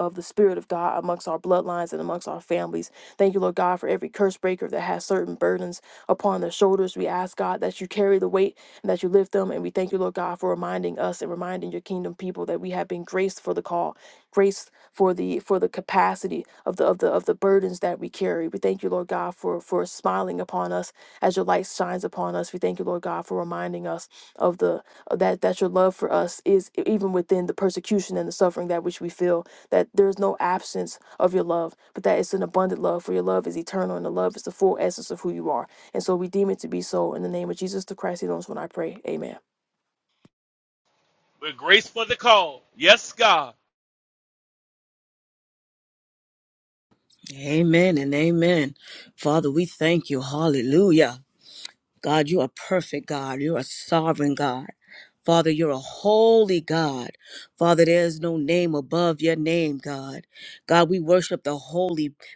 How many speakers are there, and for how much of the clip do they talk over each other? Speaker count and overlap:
3, no overlap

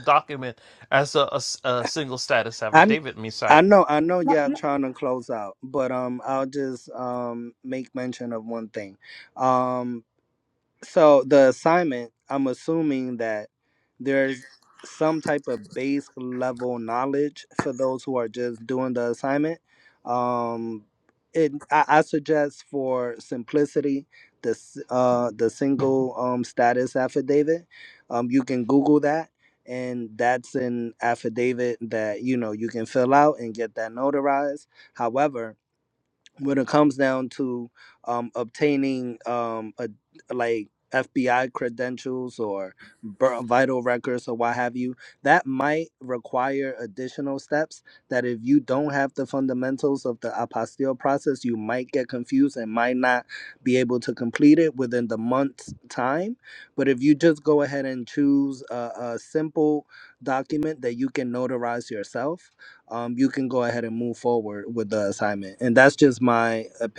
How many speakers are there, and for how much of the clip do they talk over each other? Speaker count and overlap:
2, about 1%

